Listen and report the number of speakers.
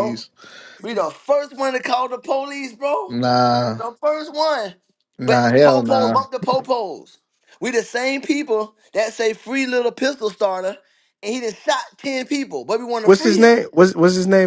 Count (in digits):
3